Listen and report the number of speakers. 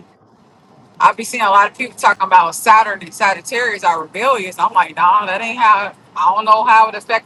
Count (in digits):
1